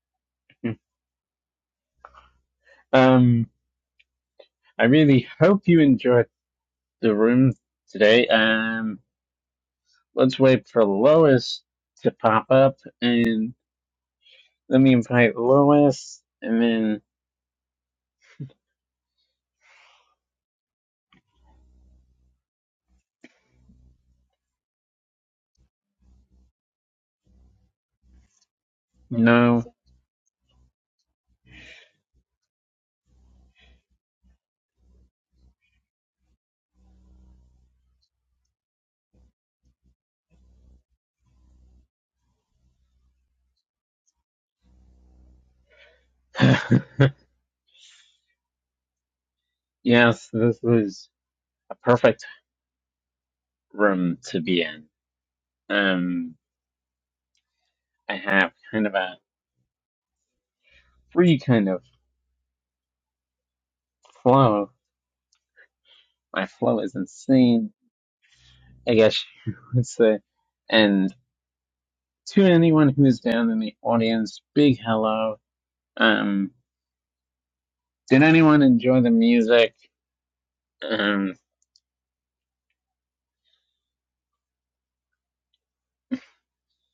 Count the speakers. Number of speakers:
one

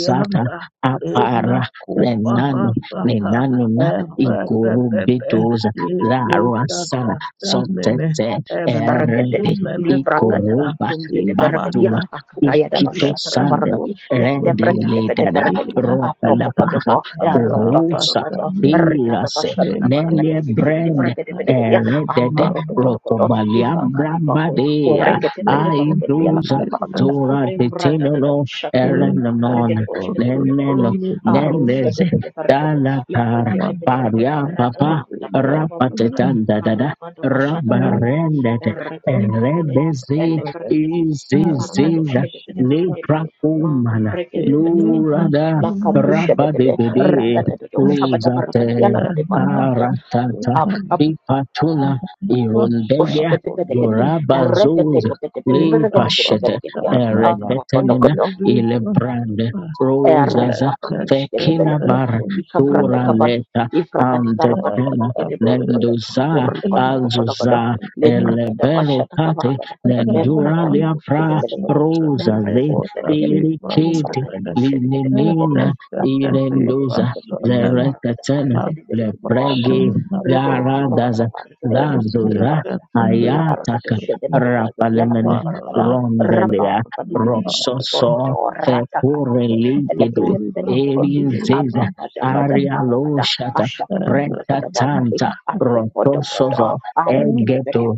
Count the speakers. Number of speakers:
three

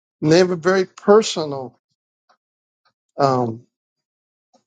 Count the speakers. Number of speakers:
one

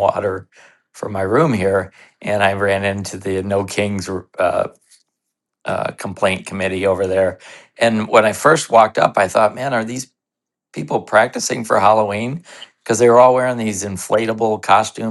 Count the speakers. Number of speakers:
one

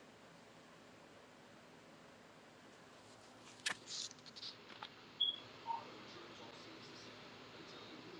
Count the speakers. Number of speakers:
zero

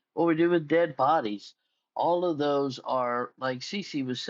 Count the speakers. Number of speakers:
one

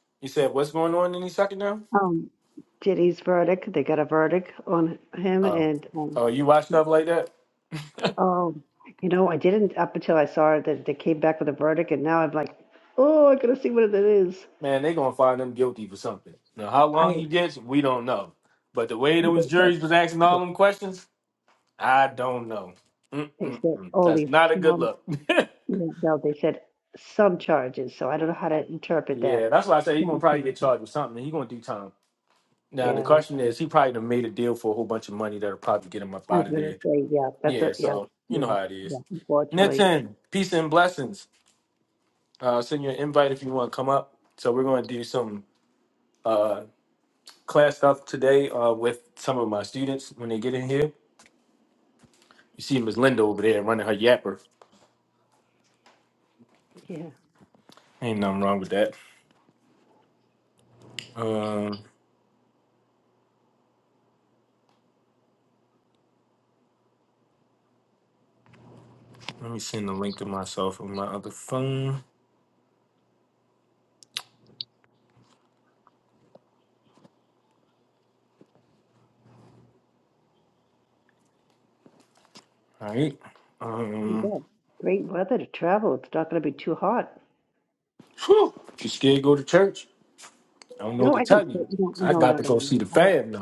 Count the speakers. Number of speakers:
two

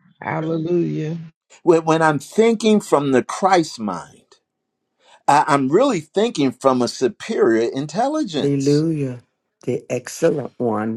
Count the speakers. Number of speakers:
three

